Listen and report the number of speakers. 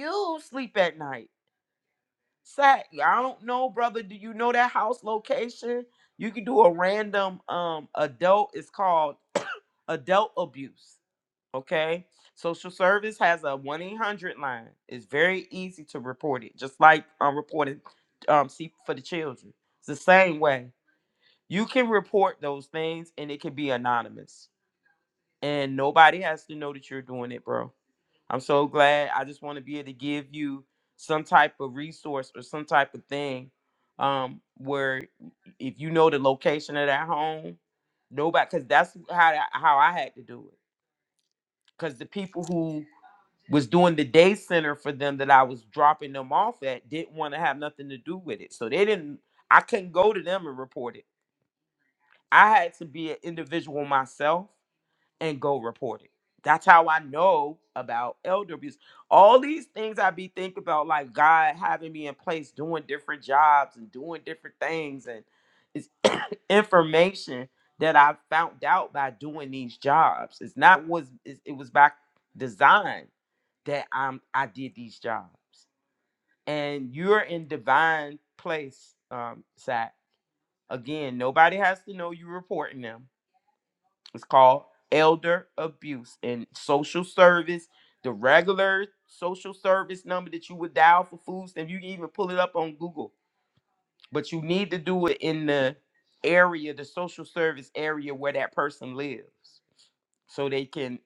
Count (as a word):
one